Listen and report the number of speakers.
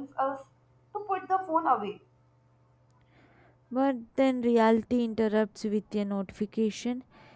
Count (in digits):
2